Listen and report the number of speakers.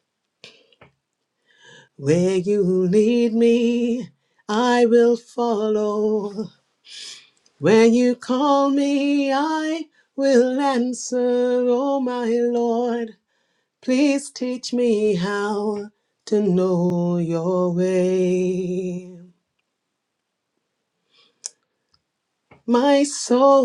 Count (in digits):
1